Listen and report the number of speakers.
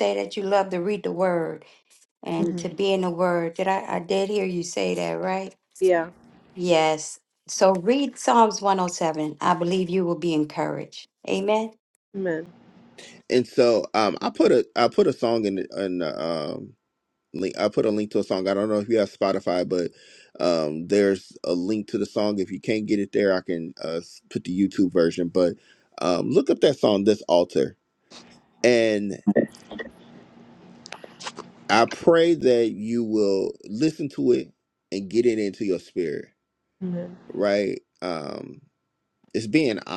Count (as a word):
three